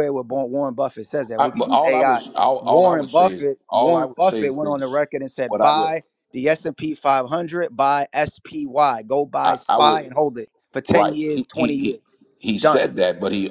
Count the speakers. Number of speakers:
2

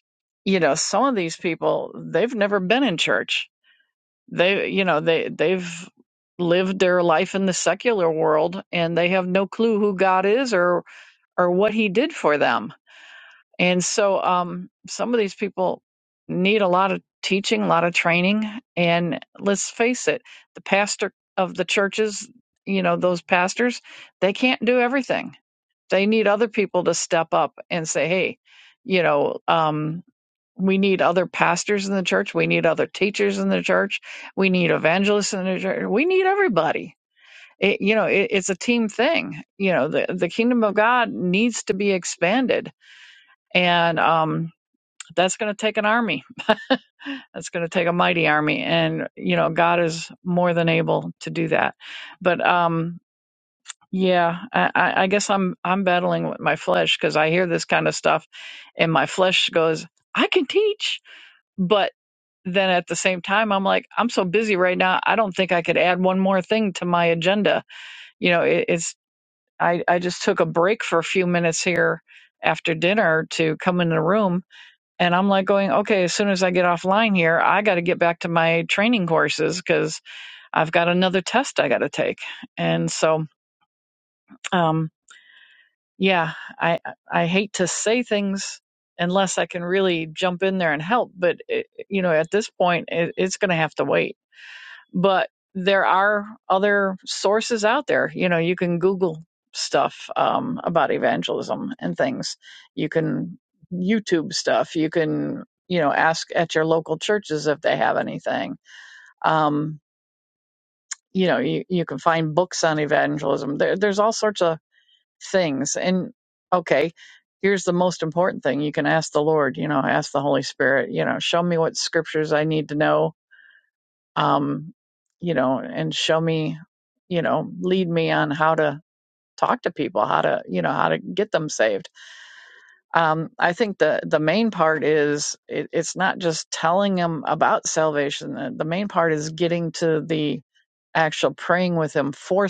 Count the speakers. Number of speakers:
1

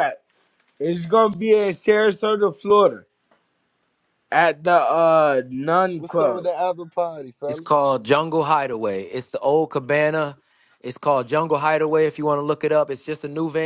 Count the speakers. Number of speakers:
3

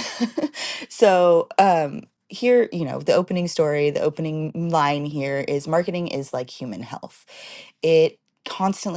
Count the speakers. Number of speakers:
1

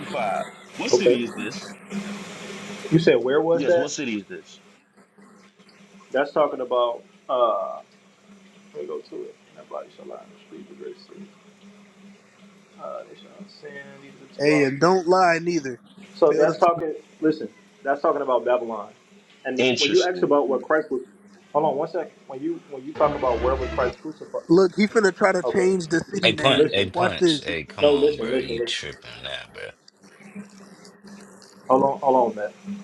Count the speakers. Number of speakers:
4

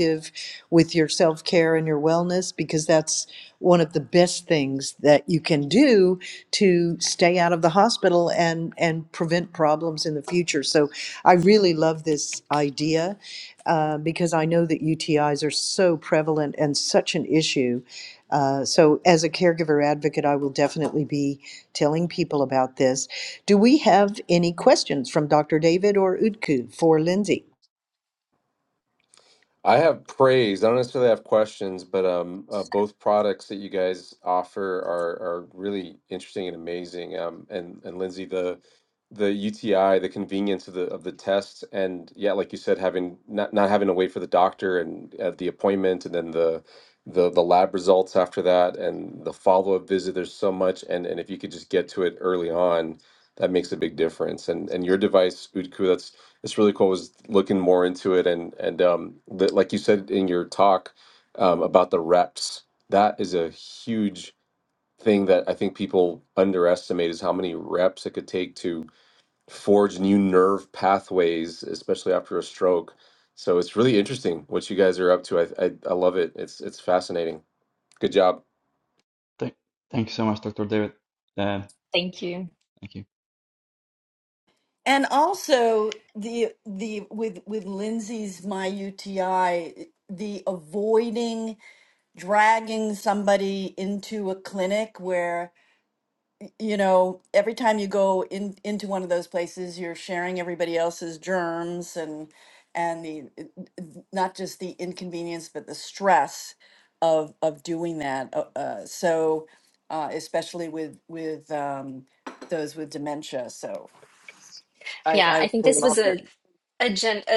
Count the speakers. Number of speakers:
5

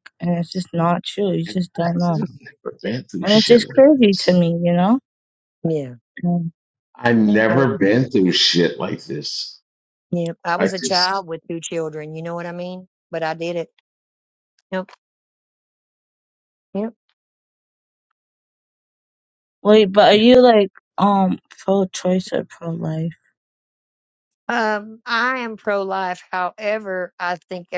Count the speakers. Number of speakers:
3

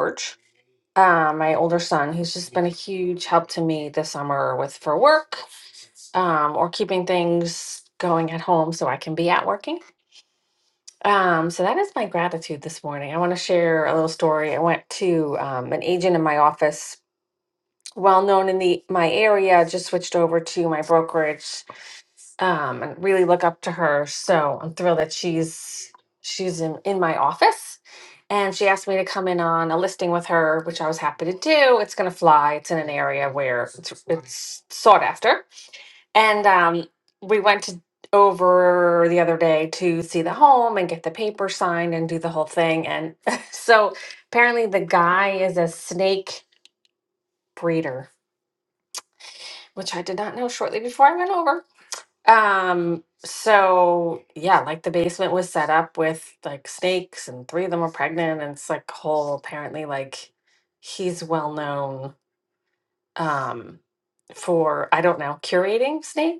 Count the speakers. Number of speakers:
1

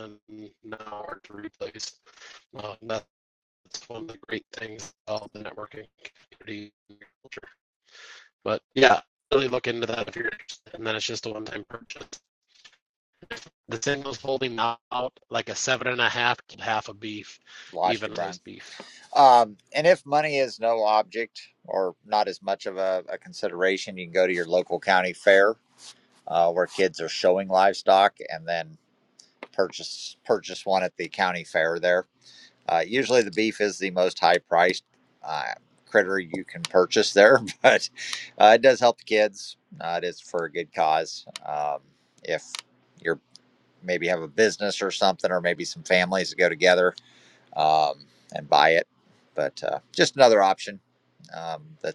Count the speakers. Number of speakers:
2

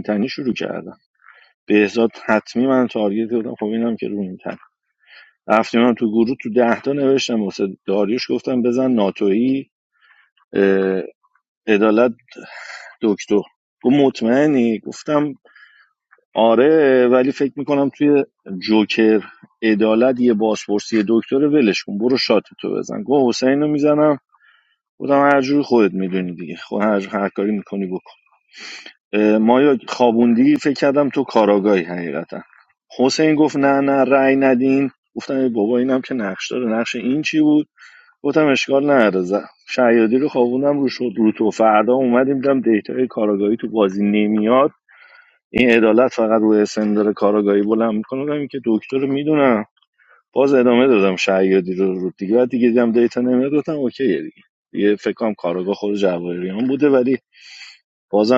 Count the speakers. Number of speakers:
1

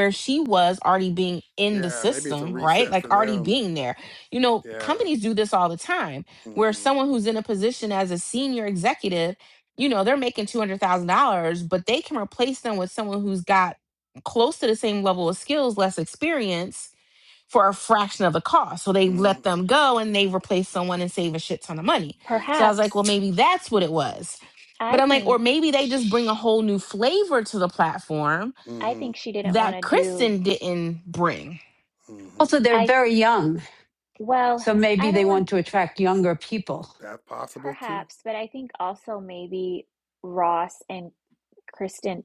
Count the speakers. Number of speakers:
4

